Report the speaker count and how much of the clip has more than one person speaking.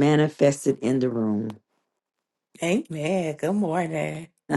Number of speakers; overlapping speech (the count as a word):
two, no overlap